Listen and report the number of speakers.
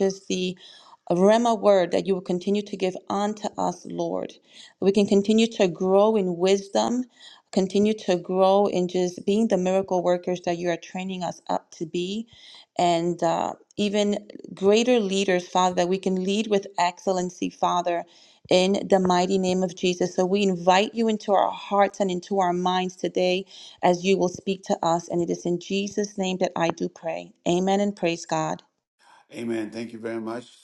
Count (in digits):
2